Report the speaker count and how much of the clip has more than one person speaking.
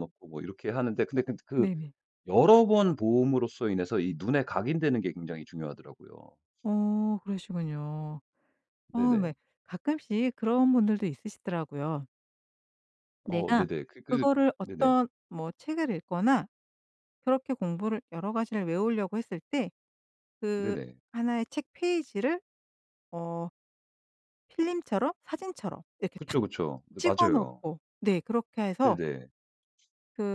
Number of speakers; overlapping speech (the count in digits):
2, about 7%